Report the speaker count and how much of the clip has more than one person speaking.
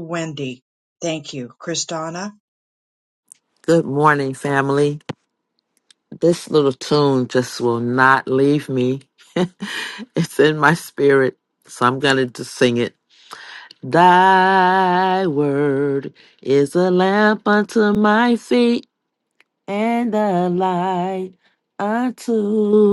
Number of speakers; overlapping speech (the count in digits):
2, no overlap